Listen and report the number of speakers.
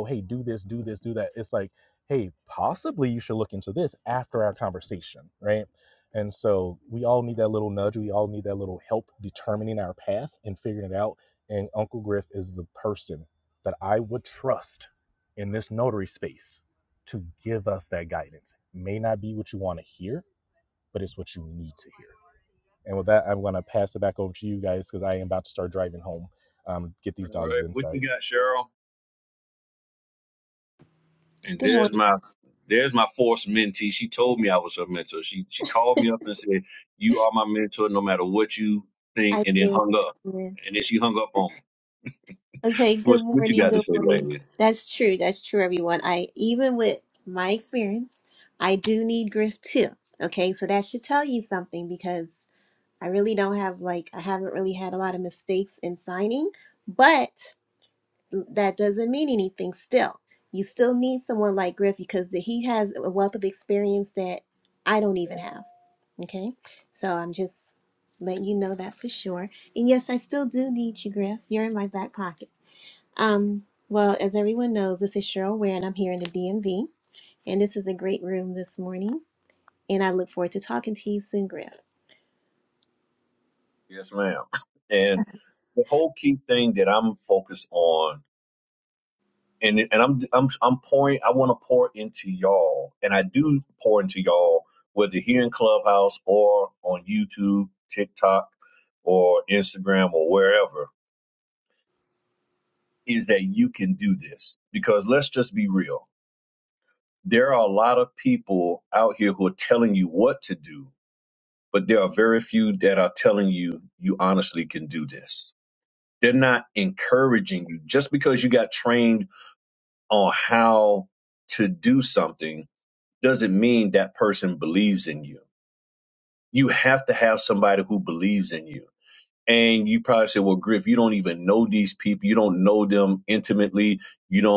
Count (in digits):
3